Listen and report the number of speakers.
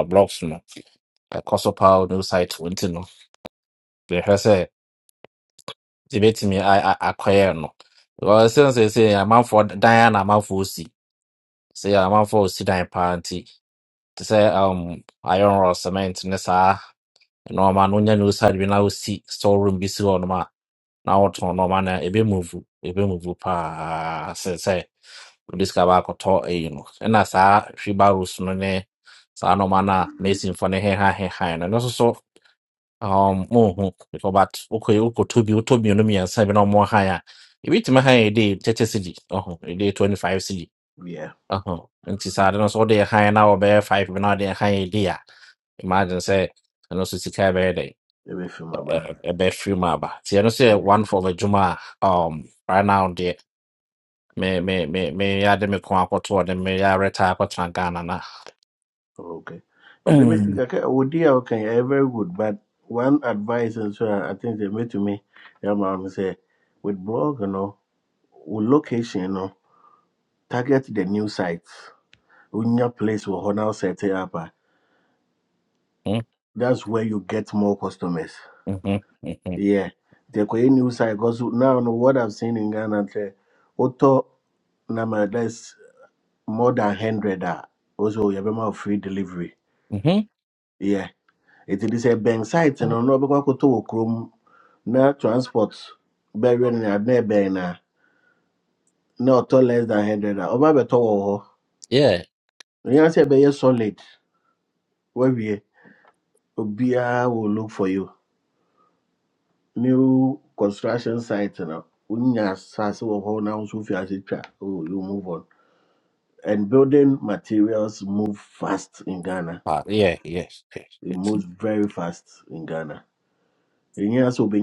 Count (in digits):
2